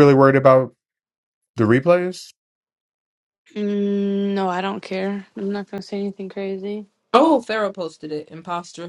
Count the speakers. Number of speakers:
3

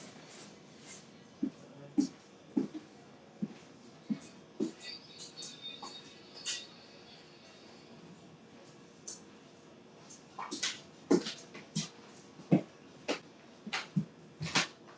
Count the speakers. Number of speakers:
0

